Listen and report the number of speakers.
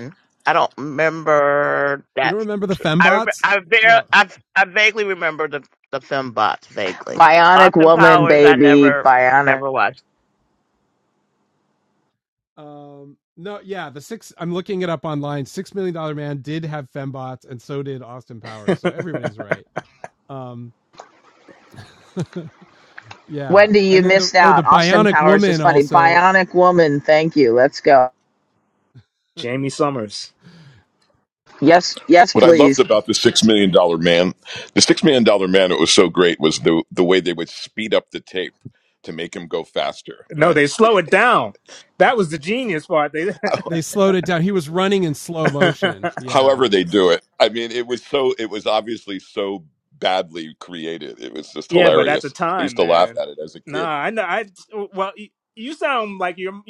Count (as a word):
five